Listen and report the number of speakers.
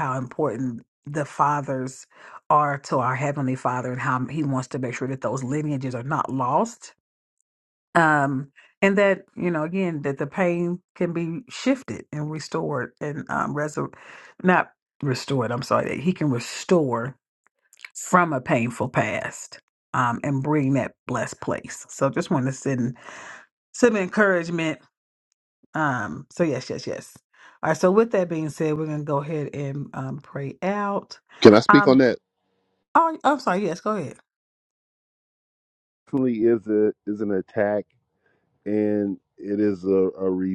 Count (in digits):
2